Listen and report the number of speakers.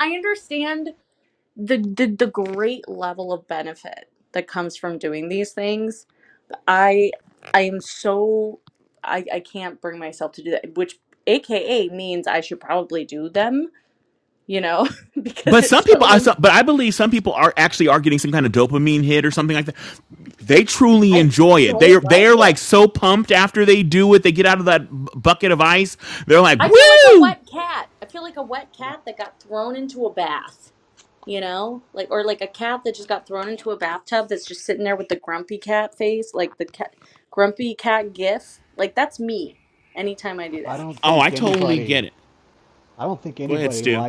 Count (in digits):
3